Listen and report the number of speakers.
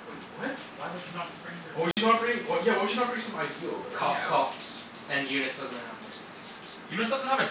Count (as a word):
three